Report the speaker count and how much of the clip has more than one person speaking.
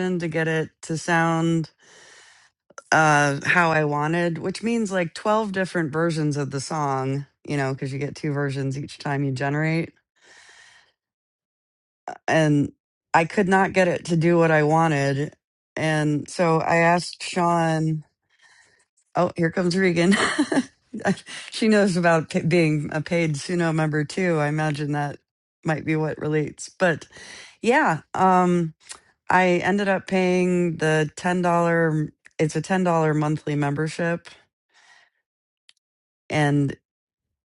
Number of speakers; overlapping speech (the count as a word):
one, no overlap